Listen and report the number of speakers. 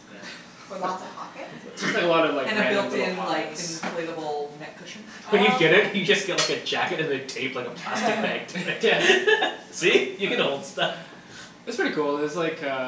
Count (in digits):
4